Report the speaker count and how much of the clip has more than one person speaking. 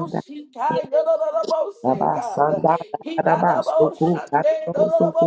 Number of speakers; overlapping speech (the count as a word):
two, about 51%